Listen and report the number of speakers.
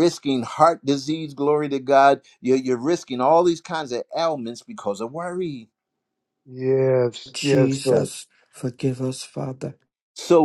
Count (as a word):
three